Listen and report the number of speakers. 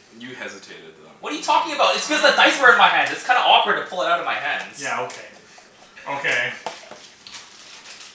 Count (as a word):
three